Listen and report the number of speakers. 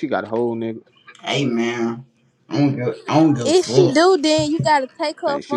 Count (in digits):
3